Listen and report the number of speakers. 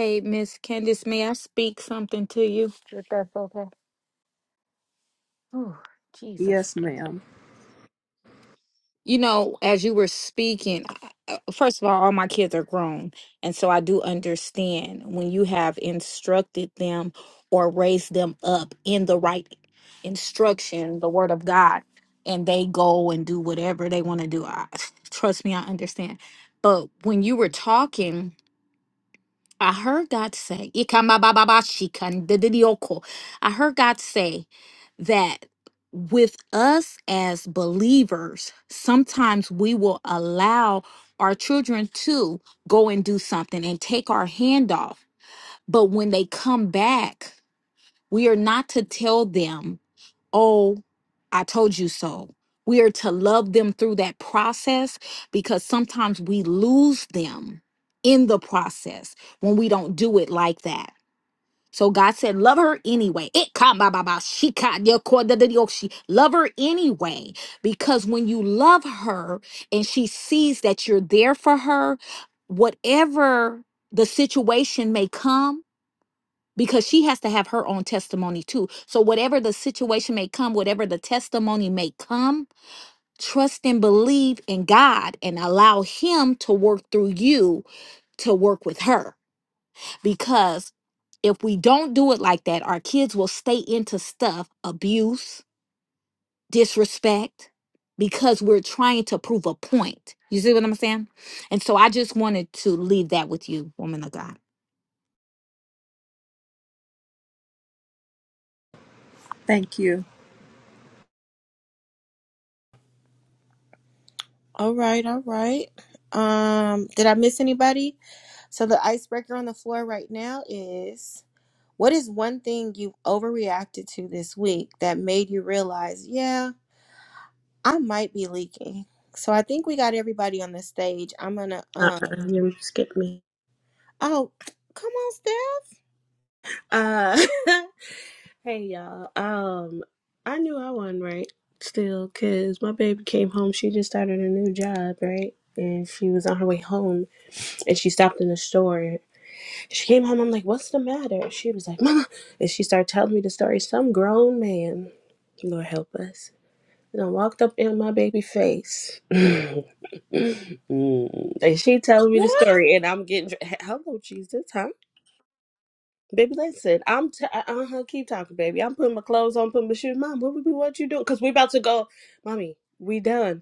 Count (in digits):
4